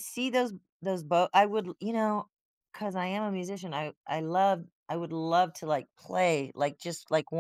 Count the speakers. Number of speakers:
1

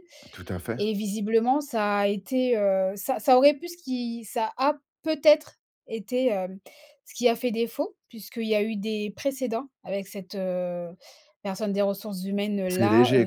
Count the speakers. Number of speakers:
2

